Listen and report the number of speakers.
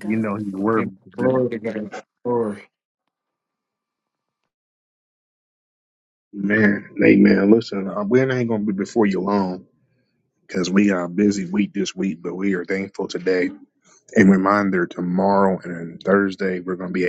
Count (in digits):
2